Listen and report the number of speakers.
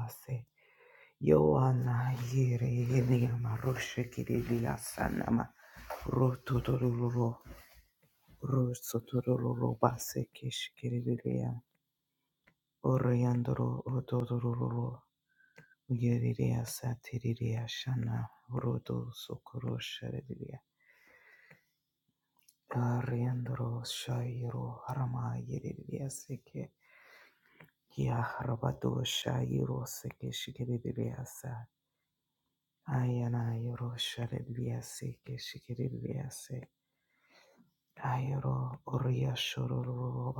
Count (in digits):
1